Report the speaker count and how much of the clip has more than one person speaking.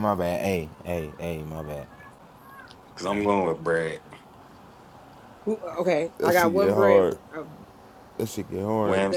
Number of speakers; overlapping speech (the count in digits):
3, about 16%